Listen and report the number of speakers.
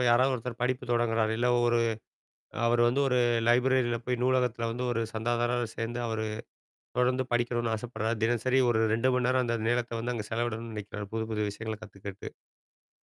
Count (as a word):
one